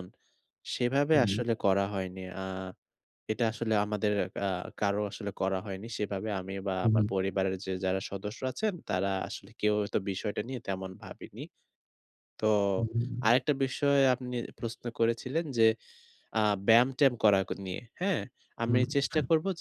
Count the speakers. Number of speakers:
2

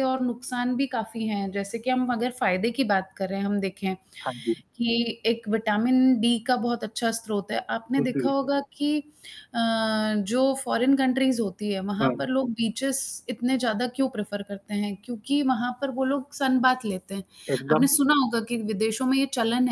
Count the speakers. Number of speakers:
2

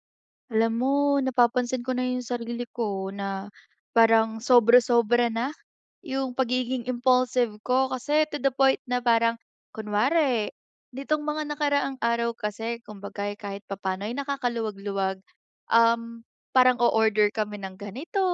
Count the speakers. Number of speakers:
1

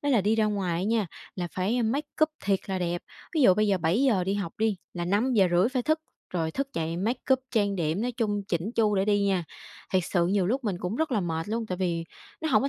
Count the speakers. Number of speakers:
1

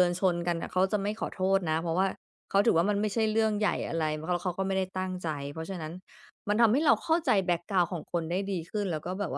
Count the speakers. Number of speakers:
1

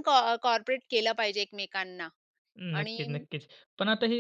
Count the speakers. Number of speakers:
2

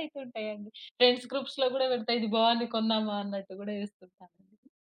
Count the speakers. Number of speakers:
1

